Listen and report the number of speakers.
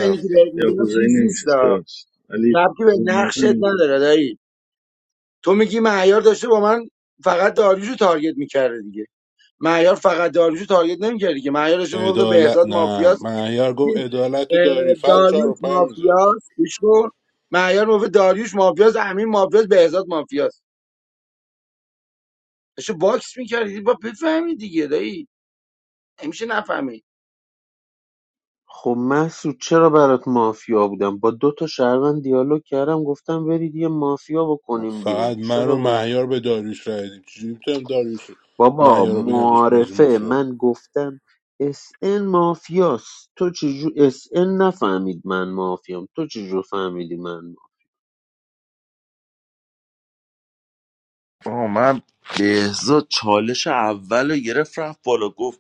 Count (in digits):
5